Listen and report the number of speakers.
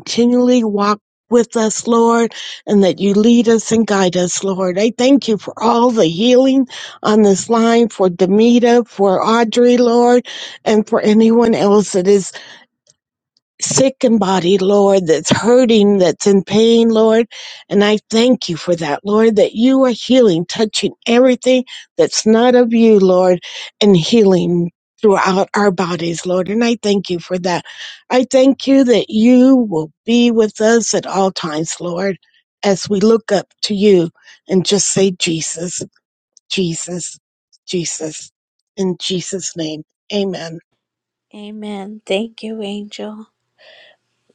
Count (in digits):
2